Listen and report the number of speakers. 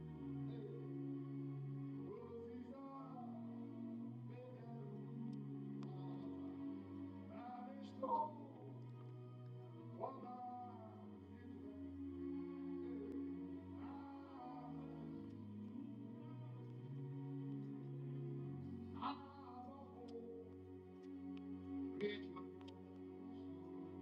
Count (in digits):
0